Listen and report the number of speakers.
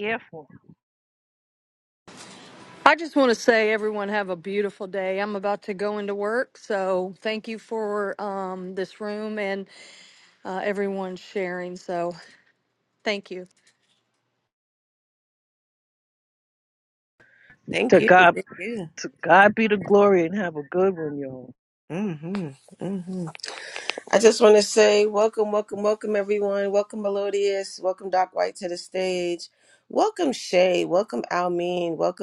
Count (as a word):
three